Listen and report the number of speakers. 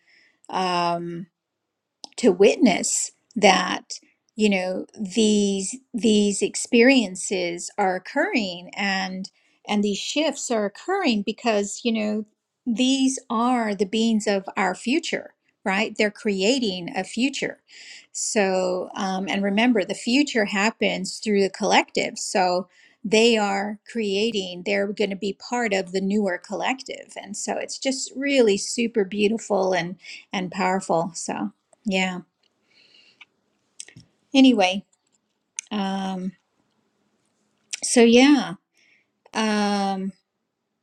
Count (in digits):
1